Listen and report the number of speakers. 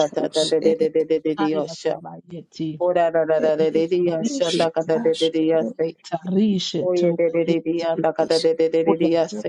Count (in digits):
3